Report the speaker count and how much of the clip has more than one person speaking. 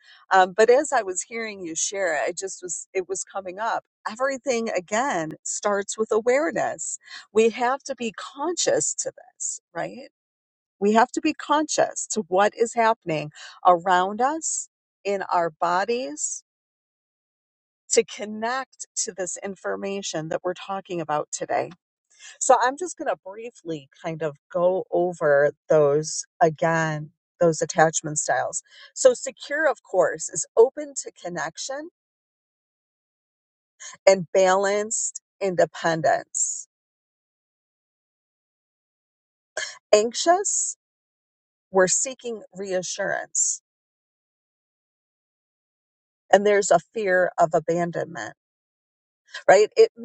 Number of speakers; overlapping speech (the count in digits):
1, no overlap